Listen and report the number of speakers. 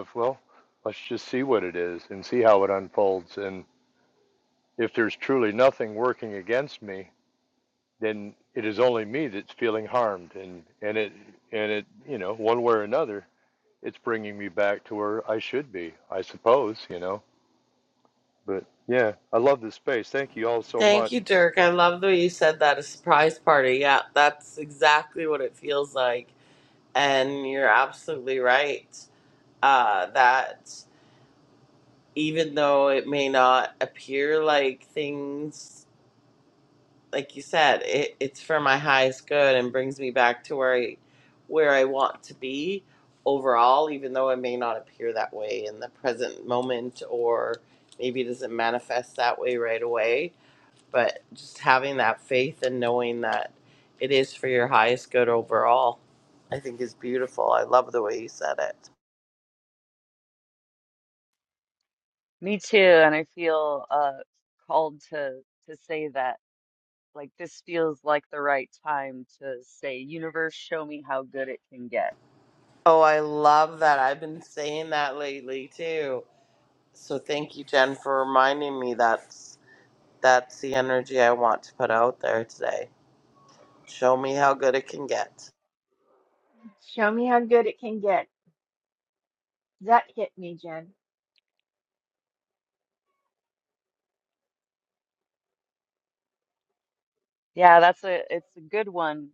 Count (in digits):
4